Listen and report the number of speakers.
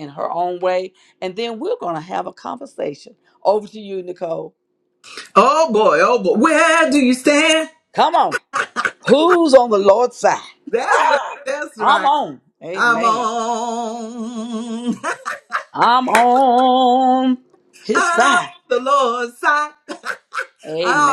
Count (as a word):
two